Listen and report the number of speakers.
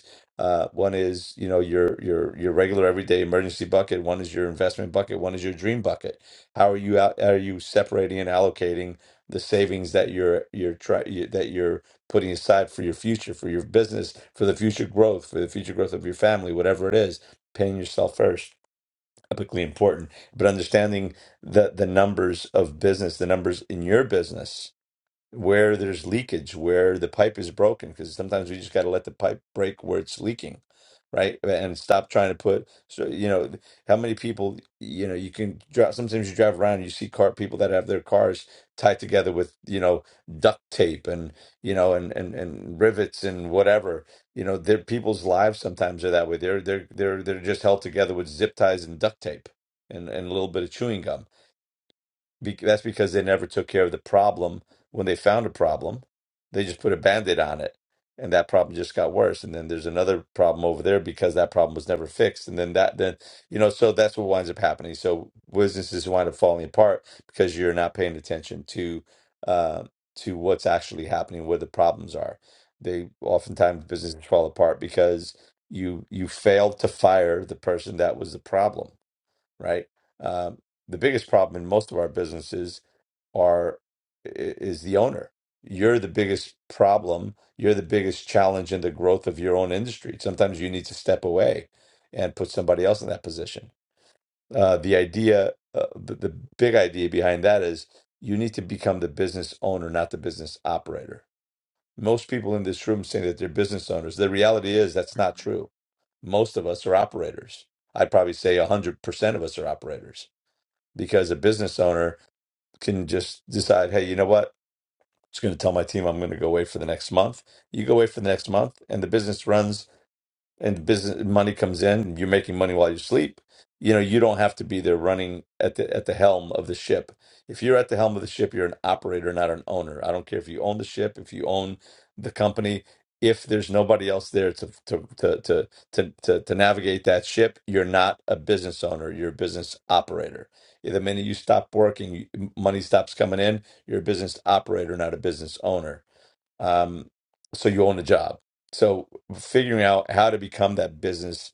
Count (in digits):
1